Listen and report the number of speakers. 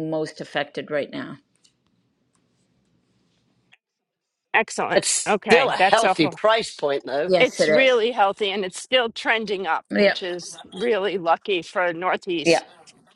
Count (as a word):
three